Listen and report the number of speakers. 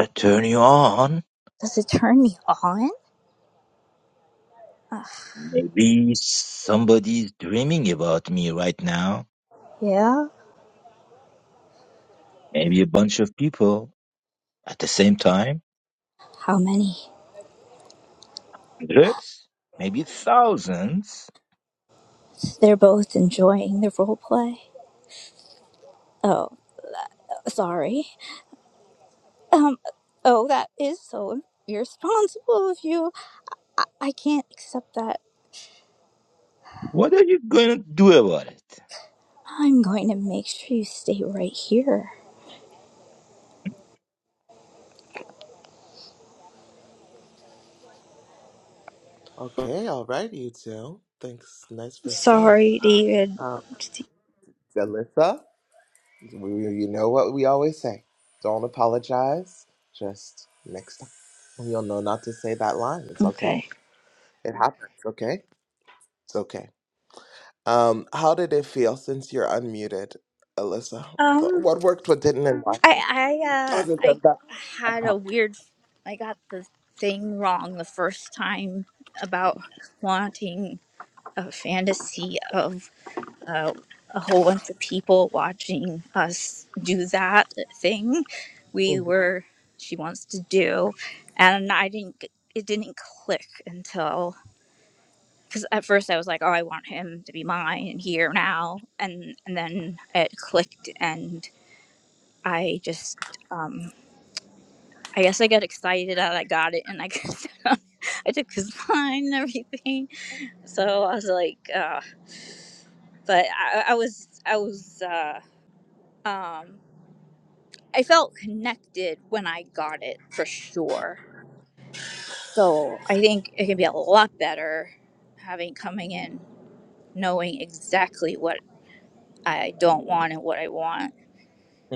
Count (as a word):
three